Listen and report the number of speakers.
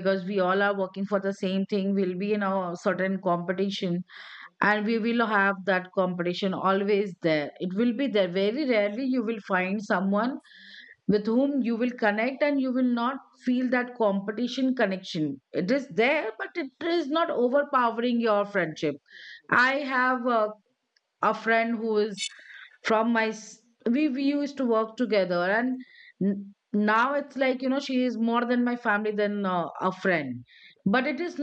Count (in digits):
1